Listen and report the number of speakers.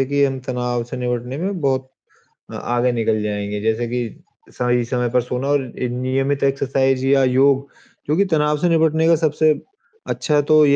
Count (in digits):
1